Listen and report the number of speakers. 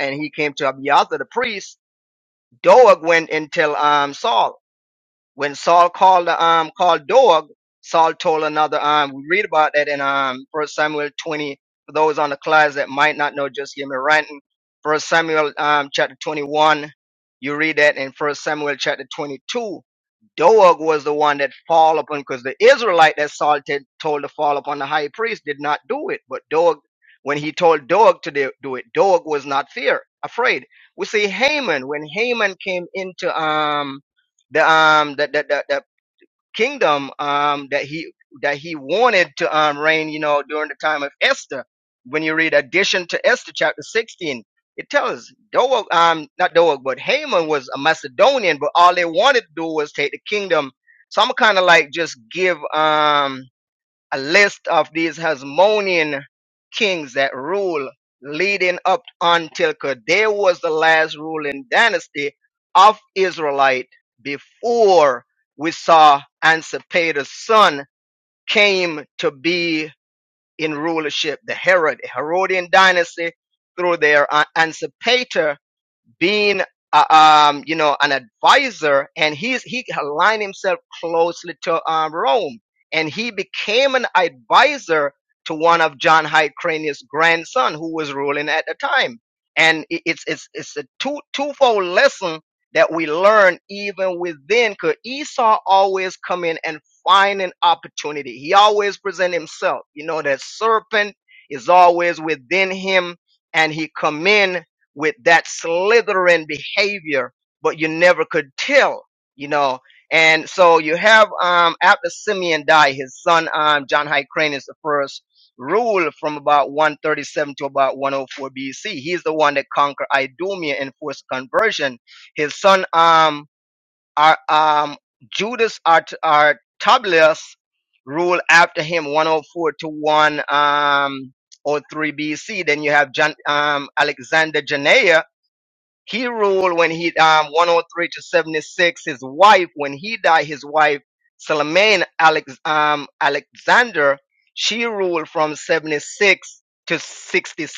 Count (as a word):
one